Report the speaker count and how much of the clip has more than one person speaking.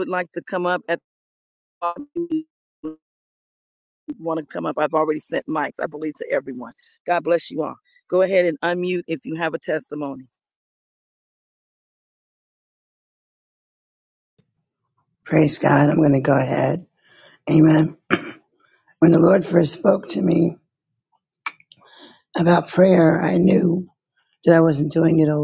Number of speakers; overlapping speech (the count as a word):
two, no overlap